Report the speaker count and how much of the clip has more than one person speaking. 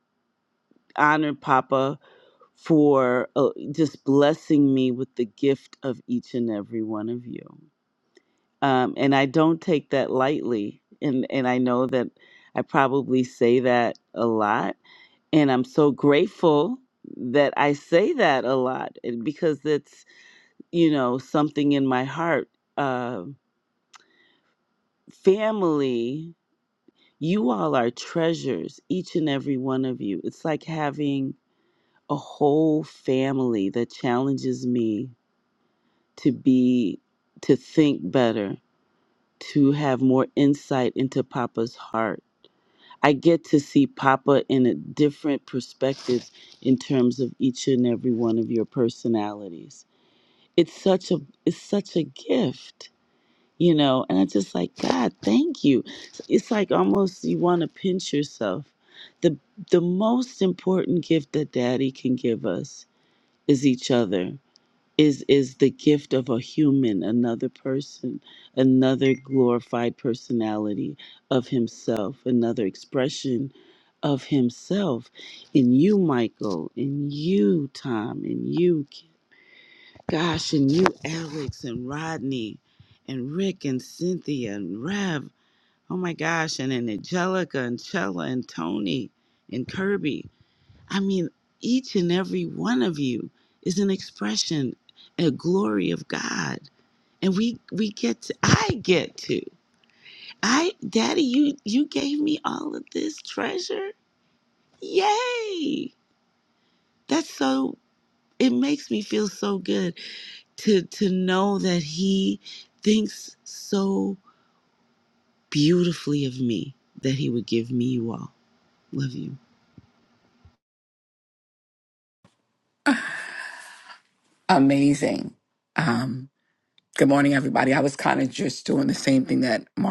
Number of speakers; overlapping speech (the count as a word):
two, no overlap